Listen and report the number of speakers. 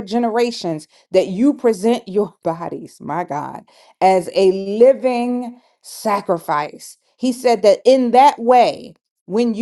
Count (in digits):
1